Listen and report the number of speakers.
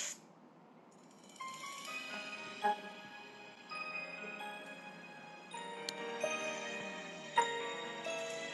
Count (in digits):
0